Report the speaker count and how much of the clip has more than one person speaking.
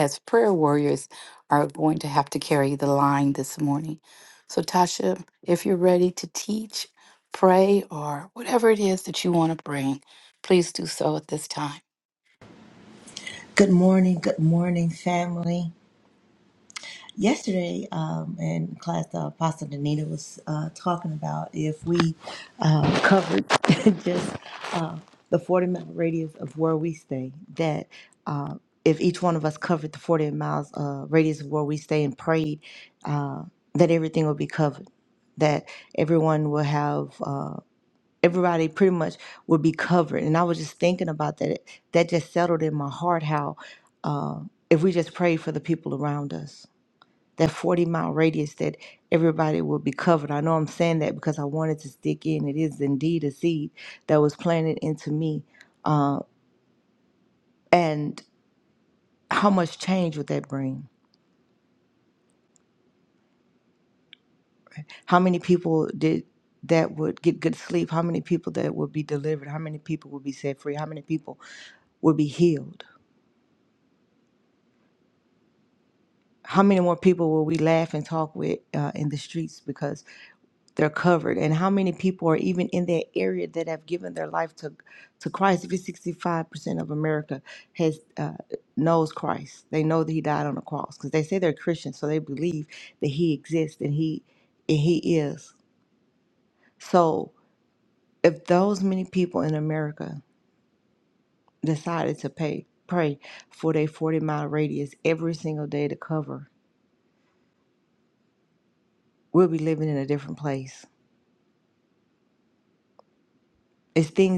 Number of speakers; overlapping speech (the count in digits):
2, no overlap